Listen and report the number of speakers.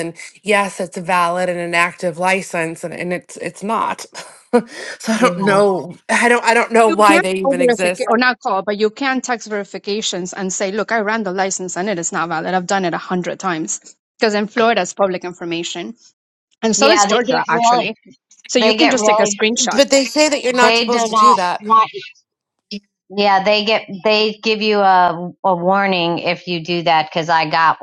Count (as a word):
three